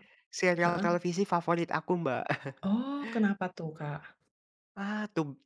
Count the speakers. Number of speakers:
2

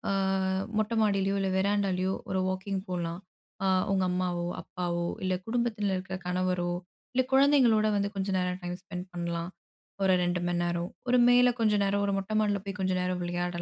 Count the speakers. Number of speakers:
1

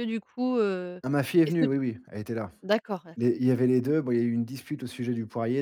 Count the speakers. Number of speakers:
2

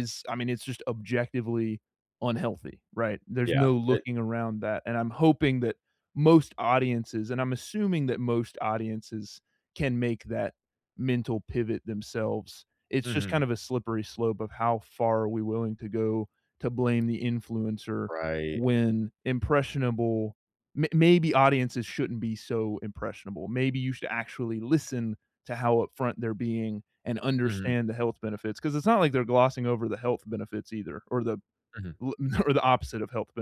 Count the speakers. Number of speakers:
2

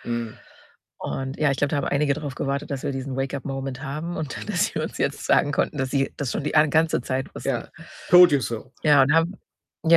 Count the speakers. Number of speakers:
2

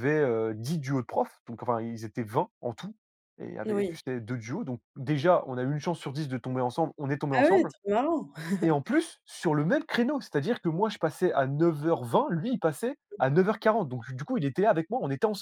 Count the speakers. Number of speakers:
2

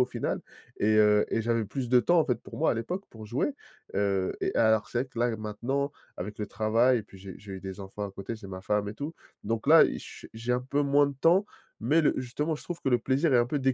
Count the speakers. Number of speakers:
1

